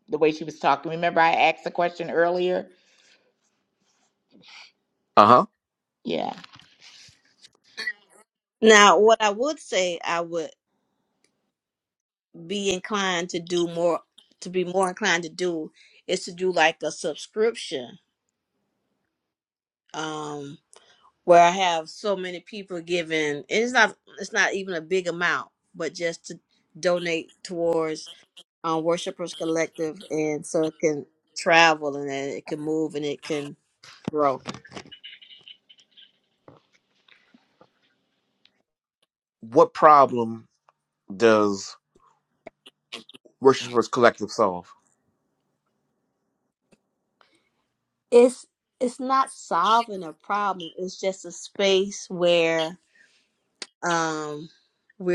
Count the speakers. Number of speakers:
3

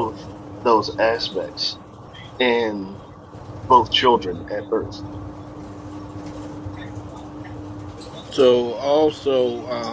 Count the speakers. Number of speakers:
2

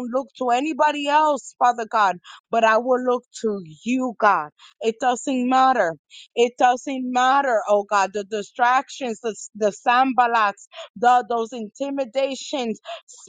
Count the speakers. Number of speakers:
1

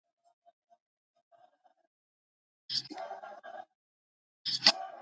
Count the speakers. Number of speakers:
0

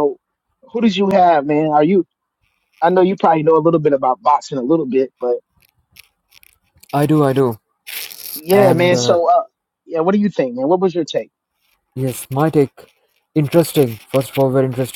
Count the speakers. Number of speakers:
2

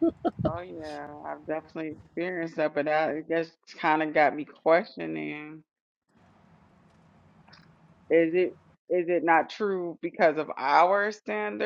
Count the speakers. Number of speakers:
1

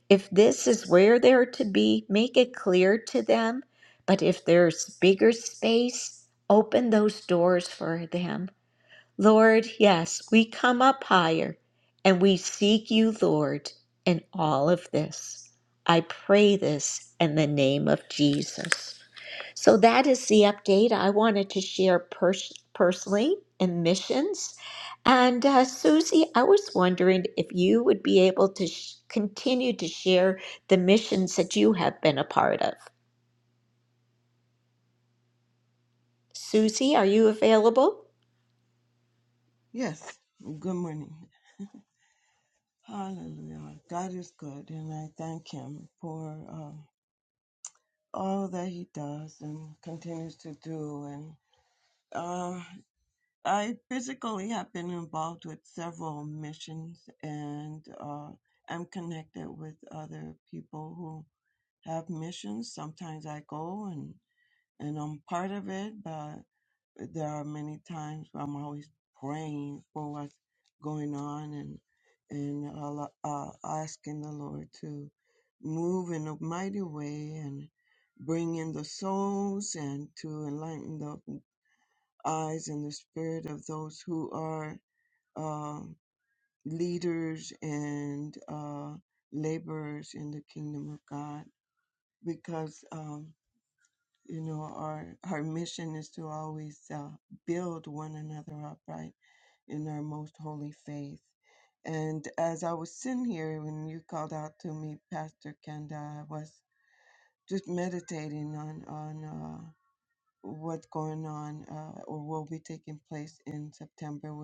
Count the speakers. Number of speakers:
2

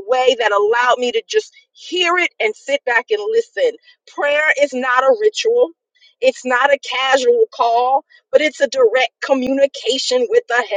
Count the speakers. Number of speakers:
1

